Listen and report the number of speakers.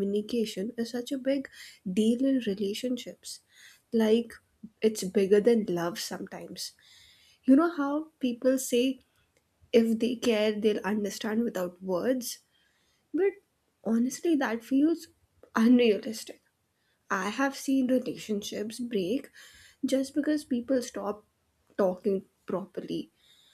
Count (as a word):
one